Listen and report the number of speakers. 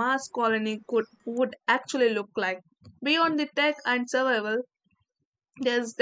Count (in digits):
1